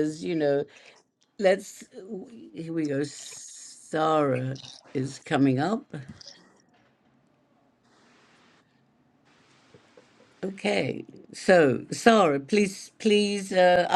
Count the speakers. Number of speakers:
one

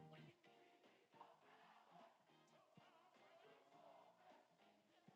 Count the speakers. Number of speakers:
zero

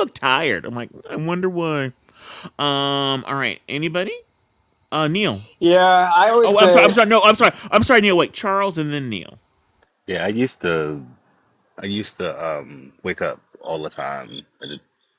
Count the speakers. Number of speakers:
three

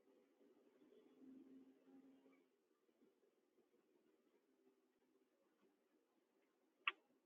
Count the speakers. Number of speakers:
zero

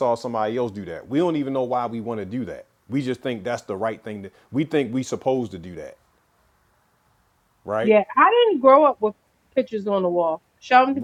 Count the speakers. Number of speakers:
two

